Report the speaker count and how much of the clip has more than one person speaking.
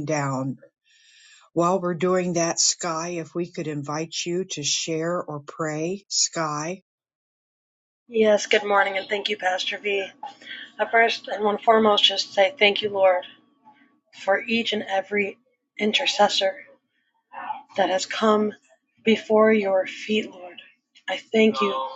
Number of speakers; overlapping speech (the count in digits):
2, no overlap